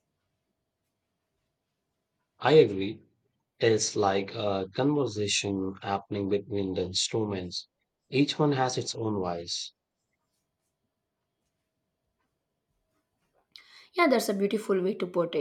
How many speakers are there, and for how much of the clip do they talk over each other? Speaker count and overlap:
two, no overlap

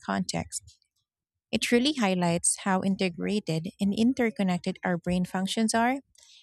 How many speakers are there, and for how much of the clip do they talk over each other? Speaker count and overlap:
one, no overlap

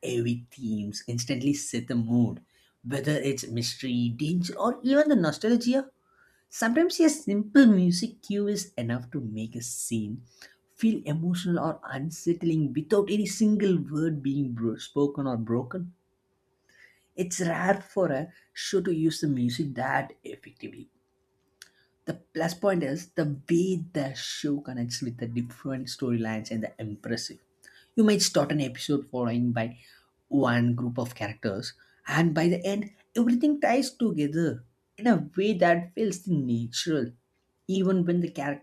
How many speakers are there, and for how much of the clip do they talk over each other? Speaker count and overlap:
one, no overlap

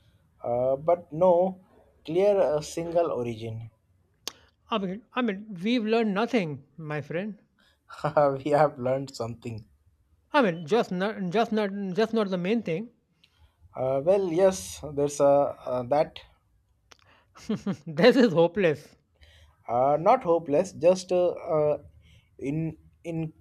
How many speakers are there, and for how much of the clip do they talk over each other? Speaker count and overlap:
two, no overlap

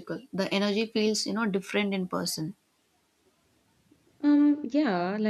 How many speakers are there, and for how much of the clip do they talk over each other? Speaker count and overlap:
two, no overlap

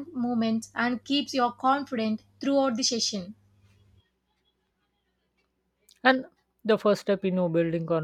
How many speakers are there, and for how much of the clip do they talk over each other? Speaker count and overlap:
two, no overlap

